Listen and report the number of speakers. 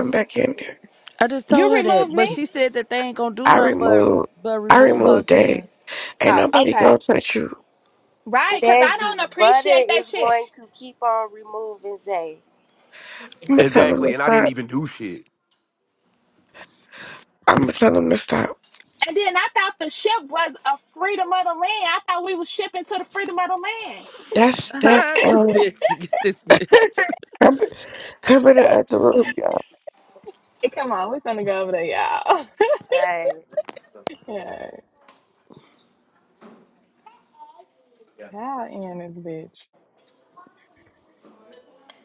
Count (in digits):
5